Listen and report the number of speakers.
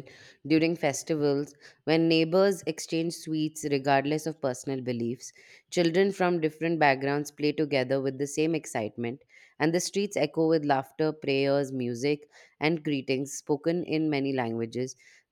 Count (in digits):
1